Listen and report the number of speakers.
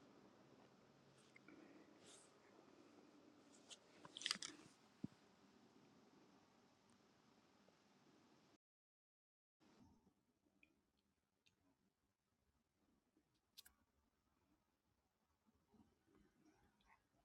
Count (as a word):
zero